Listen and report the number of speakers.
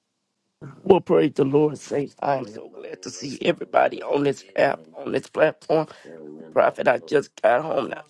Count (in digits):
1